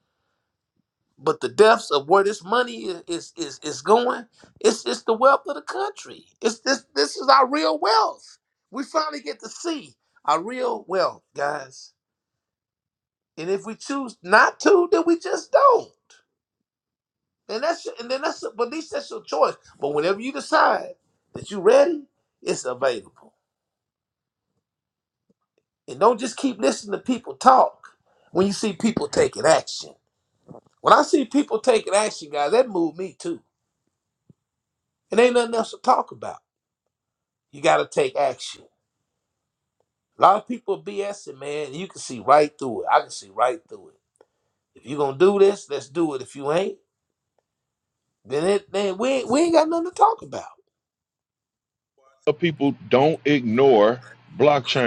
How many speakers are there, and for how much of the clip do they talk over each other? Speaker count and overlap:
two, no overlap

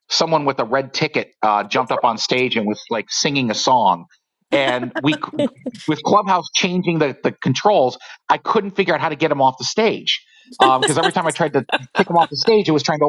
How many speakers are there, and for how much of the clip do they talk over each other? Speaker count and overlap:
one, no overlap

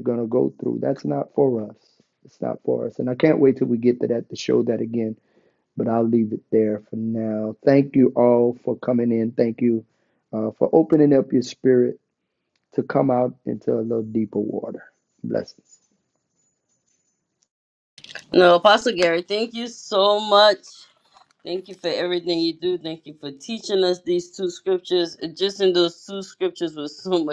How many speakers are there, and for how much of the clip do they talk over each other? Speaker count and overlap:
two, no overlap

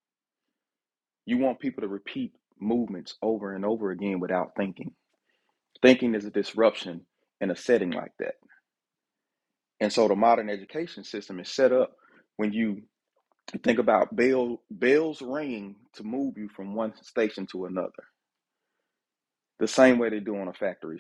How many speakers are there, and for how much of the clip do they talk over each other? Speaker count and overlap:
one, no overlap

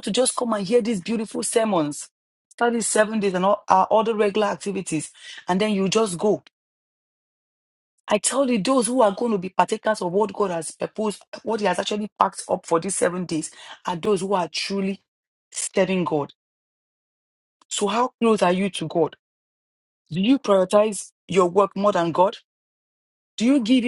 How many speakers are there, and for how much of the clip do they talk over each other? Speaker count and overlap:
one, no overlap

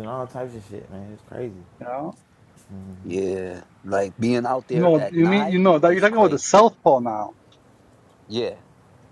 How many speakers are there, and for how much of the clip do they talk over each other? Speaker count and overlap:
three, about 18%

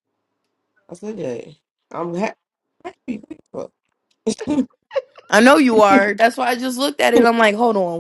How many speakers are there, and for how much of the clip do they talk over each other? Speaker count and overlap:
two, no overlap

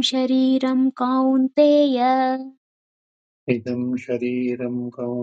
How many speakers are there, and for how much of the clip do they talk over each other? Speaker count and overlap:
two, no overlap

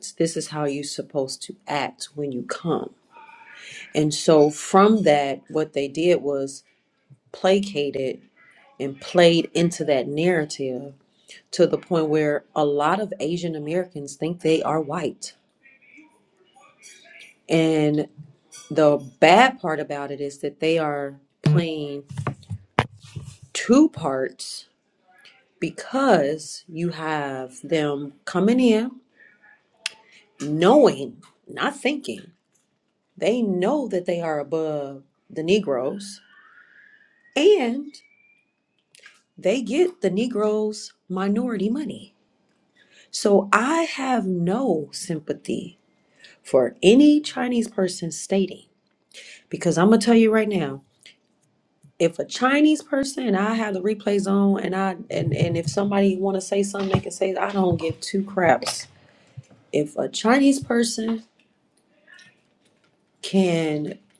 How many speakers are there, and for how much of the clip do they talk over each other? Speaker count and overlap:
one, no overlap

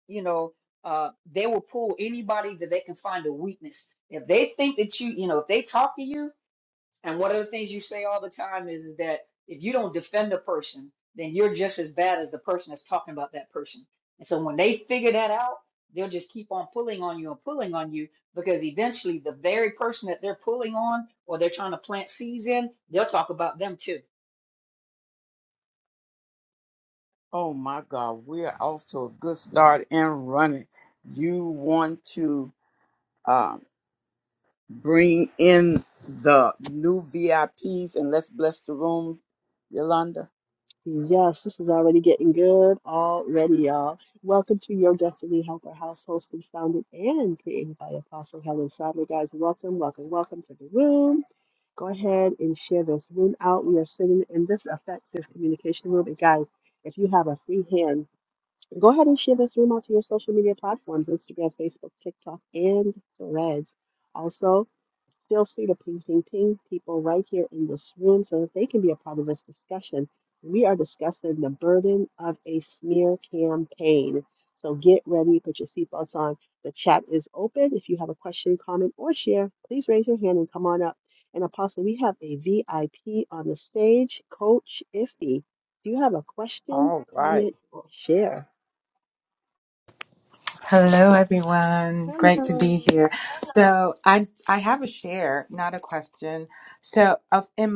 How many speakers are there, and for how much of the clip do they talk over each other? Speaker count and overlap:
four, about 2%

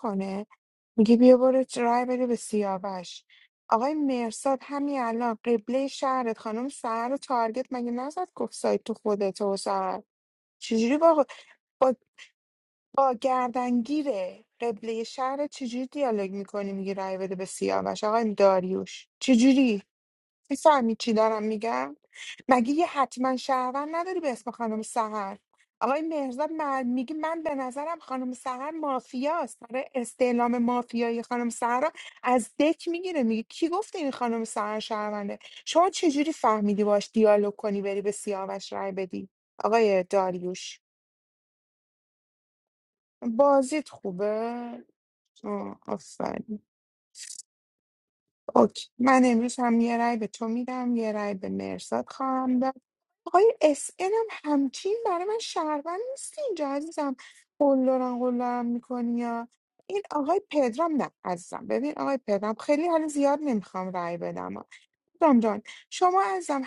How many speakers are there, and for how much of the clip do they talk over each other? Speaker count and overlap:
one, no overlap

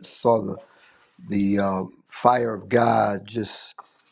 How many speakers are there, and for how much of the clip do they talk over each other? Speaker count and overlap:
one, no overlap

